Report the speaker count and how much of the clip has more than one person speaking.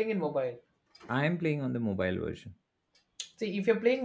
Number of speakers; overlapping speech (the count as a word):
two, no overlap